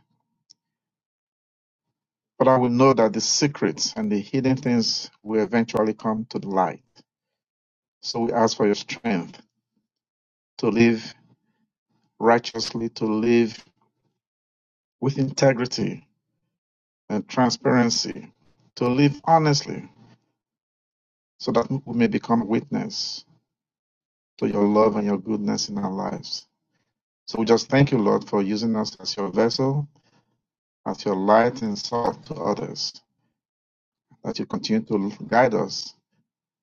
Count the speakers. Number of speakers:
one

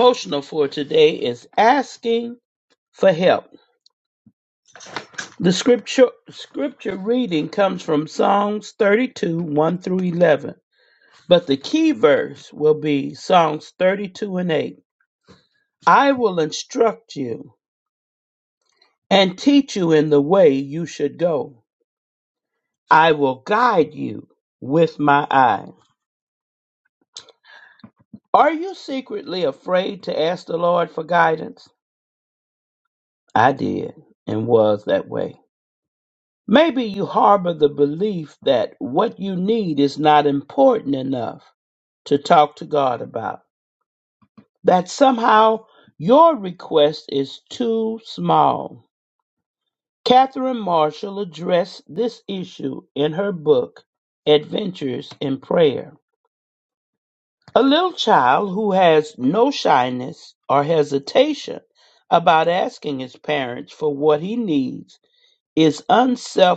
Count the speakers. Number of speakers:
one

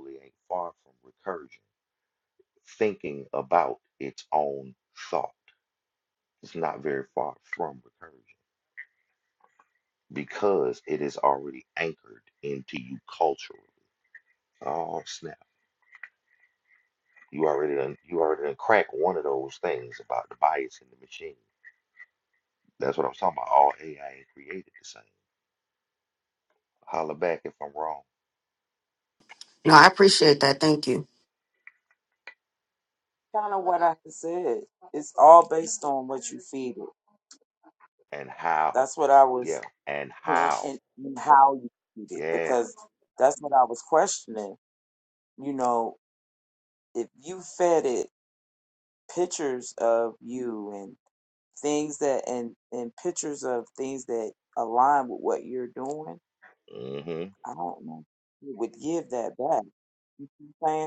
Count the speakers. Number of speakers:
three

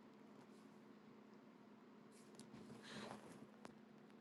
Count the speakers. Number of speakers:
zero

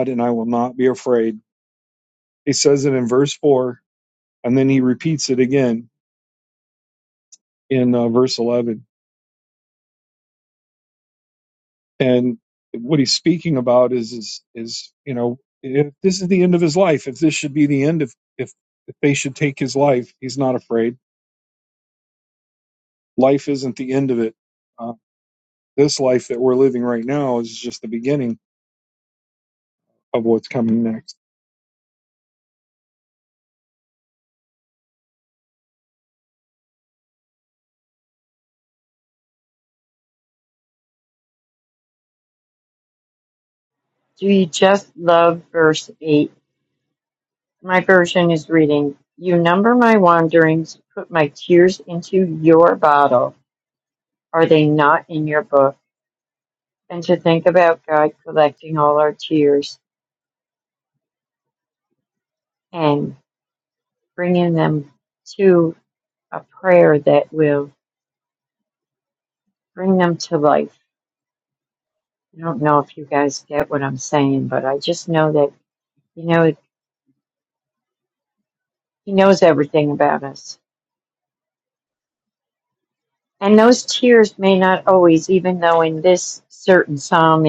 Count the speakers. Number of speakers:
two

